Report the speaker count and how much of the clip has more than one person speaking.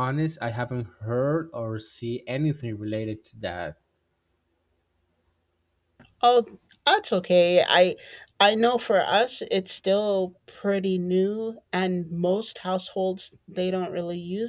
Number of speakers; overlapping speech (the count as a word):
two, no overlap